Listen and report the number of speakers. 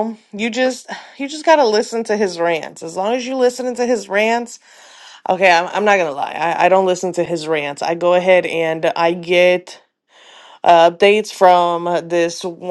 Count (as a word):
one